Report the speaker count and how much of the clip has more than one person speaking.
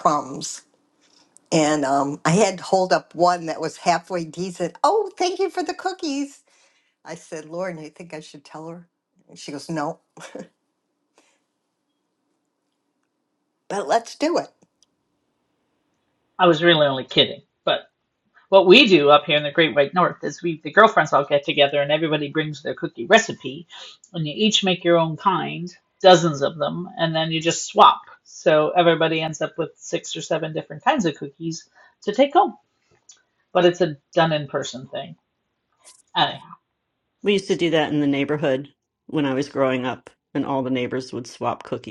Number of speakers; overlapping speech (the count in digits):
3, no overlap